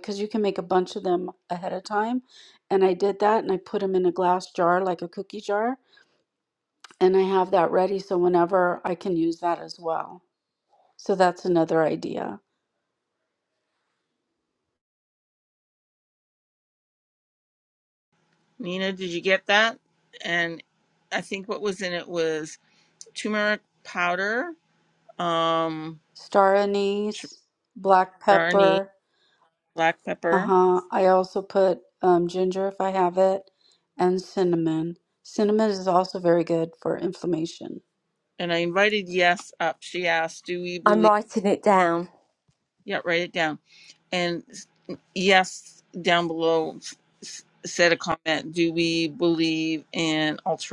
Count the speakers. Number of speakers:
three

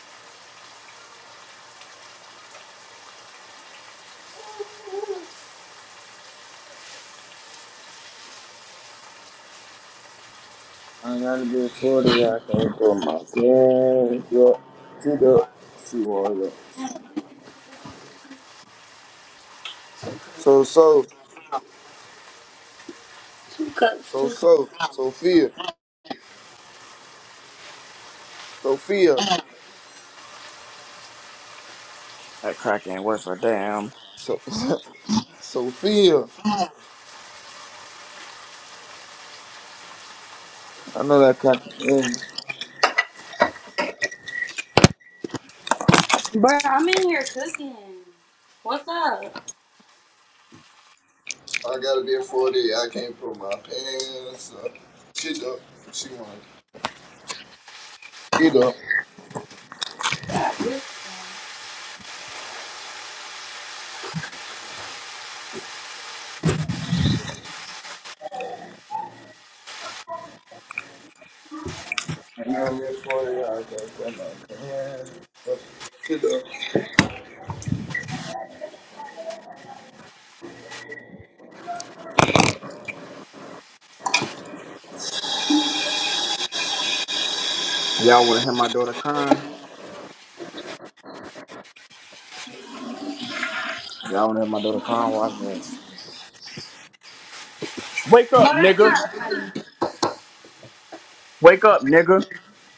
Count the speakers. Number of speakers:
three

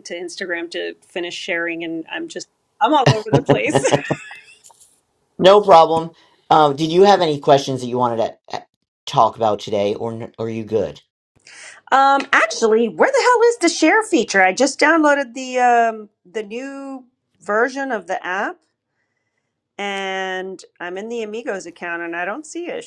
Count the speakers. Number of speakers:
two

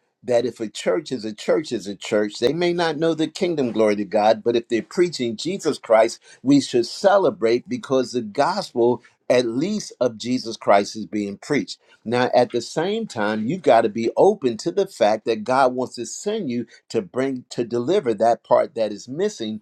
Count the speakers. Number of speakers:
one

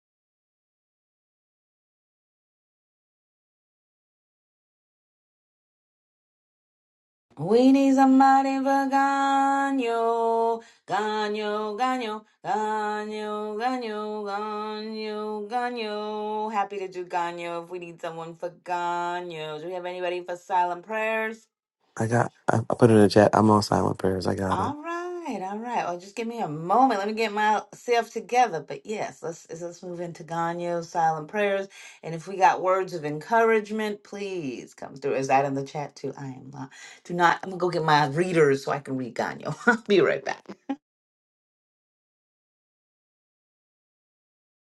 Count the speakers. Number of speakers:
two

